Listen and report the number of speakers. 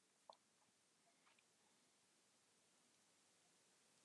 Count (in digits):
0